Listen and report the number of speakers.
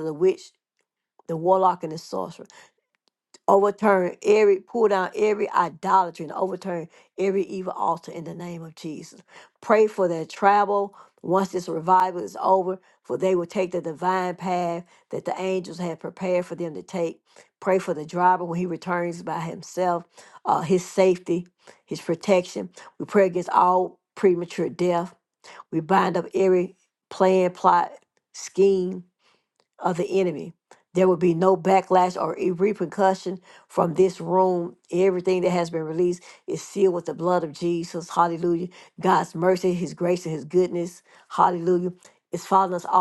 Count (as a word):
one